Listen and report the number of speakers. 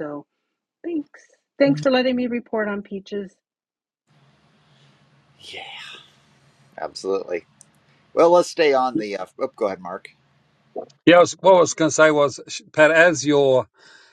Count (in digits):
3